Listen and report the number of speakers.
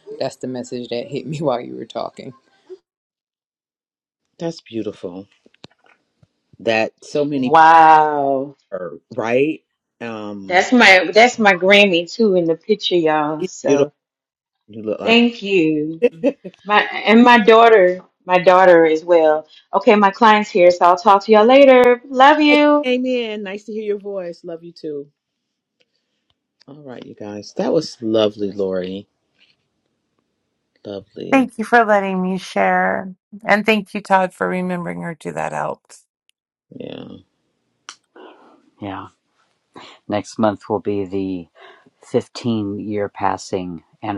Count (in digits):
5